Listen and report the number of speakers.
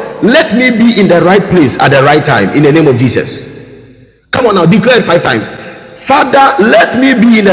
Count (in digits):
1